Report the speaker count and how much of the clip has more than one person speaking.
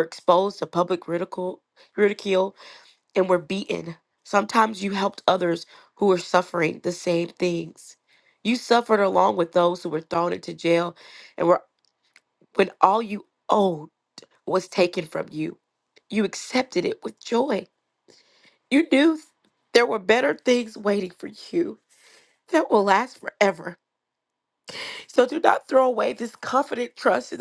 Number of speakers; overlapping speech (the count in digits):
1, no overlap